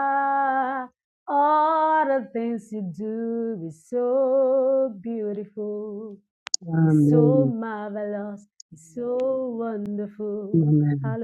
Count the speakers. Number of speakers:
two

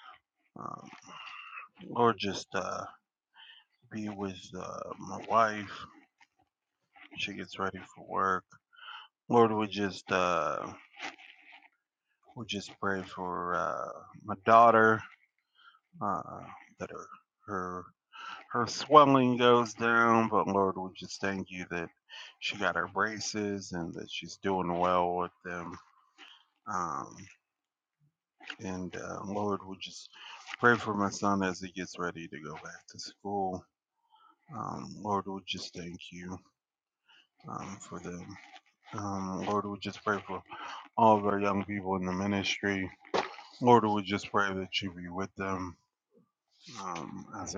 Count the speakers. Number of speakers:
one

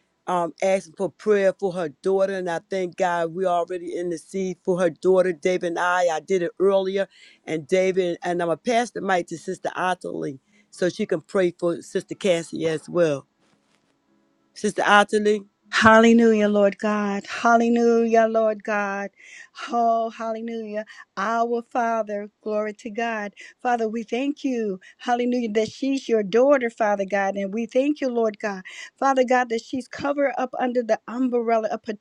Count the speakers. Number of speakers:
two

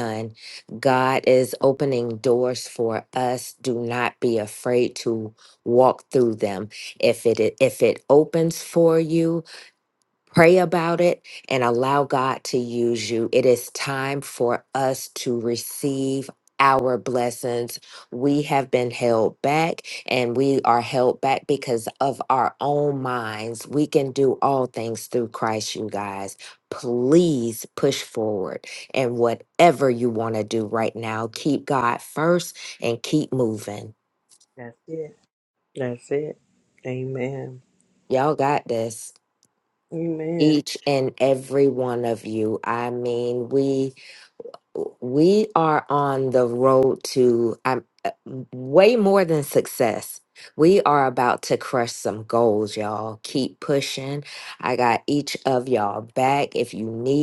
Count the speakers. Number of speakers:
two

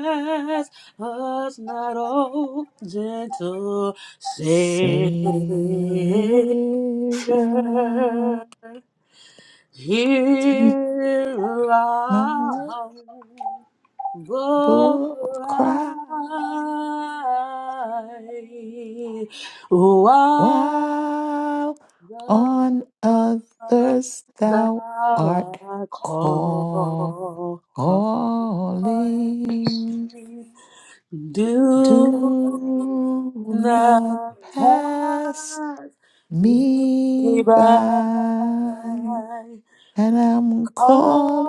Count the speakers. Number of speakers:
two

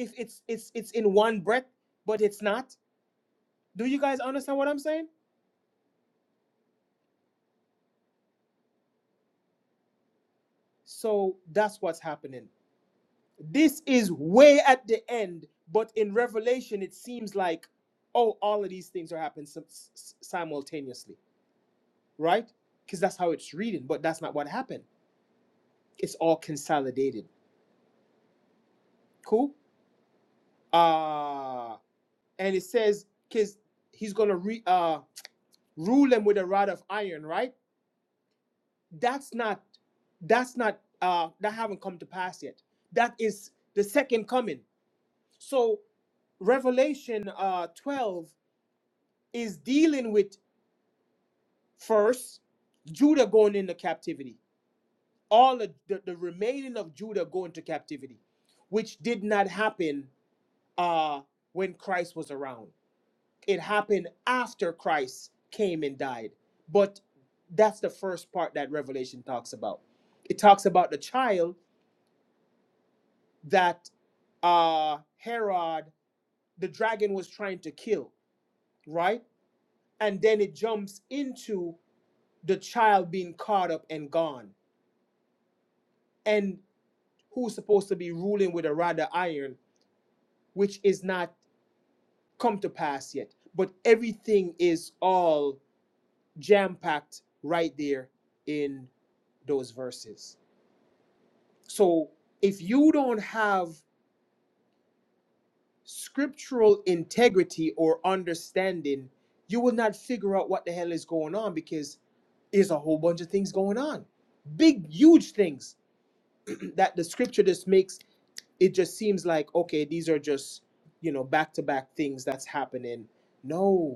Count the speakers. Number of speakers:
one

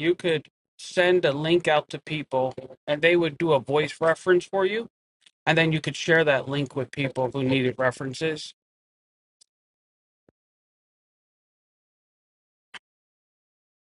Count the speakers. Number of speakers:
one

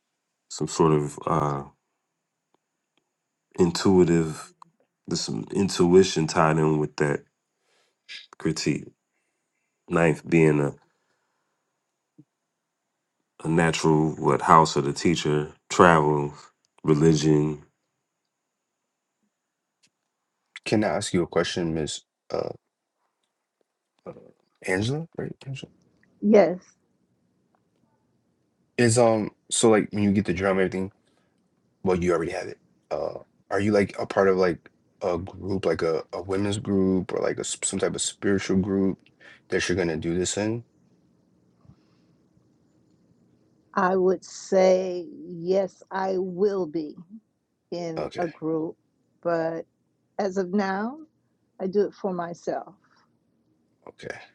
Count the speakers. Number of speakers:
three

